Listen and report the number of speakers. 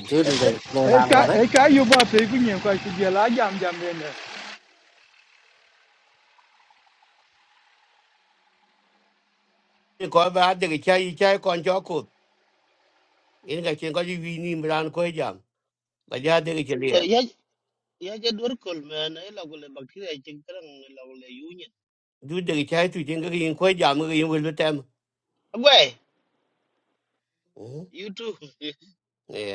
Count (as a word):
four